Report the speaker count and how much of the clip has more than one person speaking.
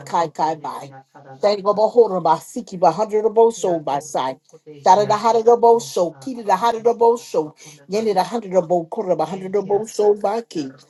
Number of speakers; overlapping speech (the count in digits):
2, about 36%